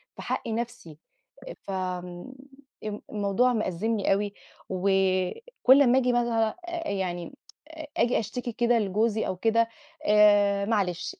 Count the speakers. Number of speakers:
1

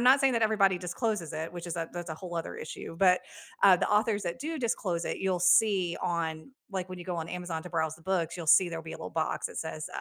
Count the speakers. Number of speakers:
1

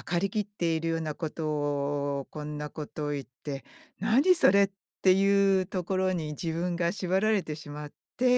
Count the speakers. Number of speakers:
1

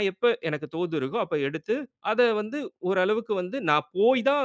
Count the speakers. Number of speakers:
1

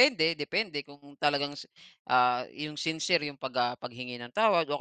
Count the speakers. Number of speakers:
1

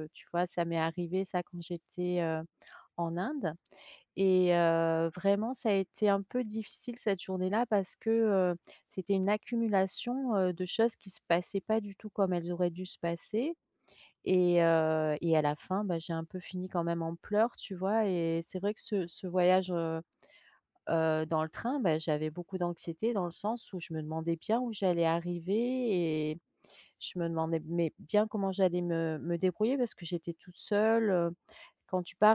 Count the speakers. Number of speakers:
1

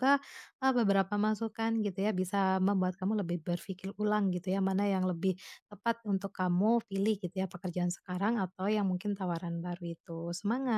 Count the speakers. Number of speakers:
1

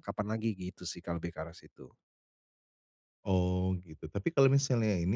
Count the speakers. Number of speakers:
2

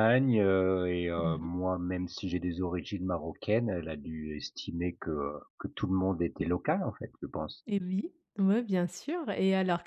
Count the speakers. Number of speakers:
2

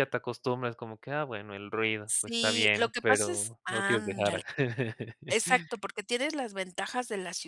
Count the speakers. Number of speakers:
2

